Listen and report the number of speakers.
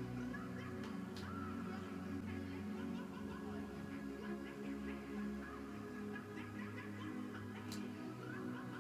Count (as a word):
zero